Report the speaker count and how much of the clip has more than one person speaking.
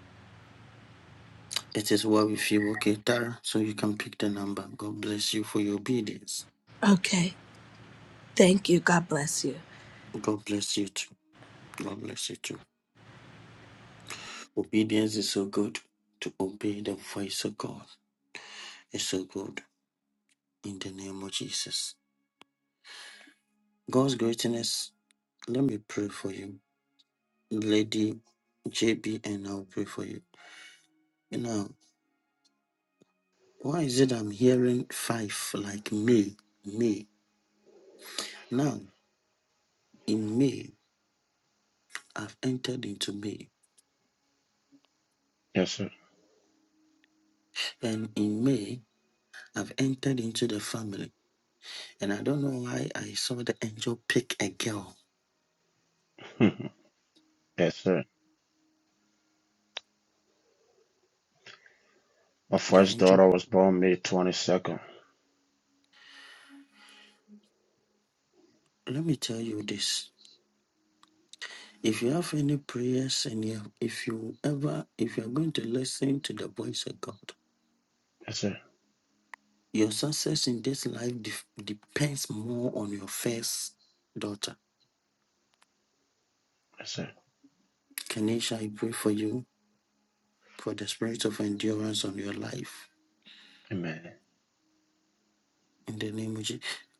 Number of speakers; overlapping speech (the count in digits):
3, about 1%